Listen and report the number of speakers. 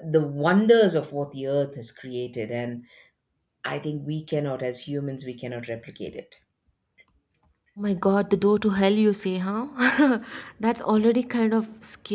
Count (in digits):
2